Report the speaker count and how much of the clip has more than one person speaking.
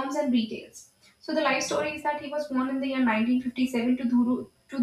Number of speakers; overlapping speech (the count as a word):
one, no overlap